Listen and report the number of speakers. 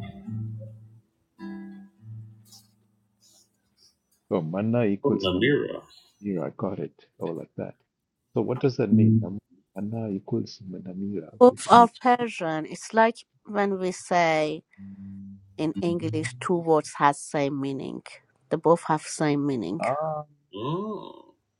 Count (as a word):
three